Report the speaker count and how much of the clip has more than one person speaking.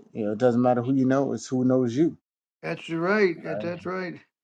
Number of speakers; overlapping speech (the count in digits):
2, no overlap